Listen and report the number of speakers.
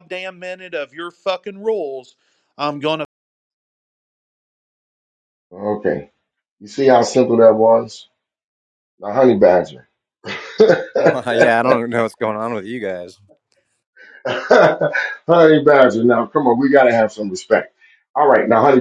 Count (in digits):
3